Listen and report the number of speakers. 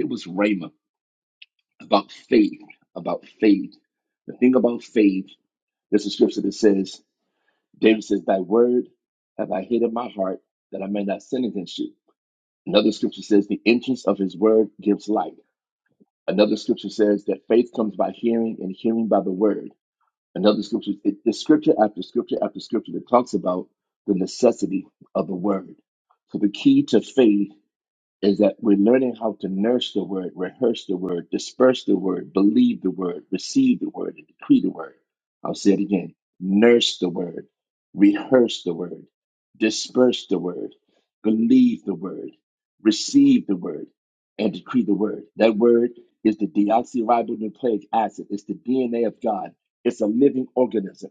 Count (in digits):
1